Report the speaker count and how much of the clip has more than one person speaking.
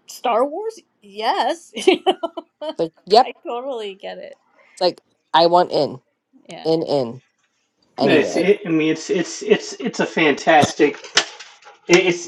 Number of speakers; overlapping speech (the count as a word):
three, about 4%